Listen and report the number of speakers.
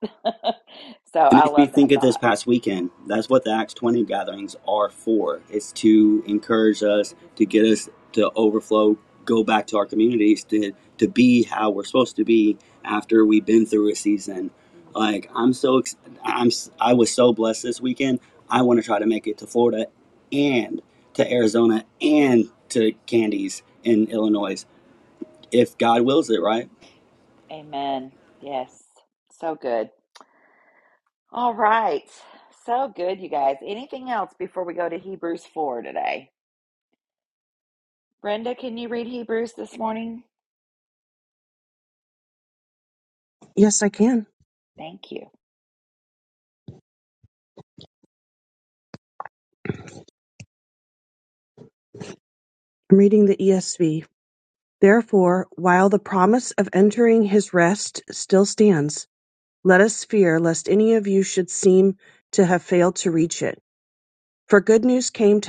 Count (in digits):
3